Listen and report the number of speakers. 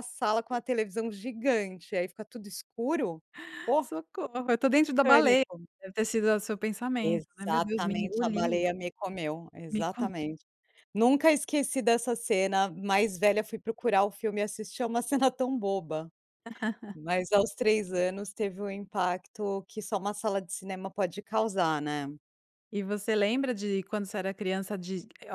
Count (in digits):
2